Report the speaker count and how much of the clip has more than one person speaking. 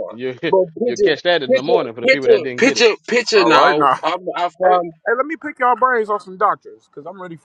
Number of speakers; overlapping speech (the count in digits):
3, about 36%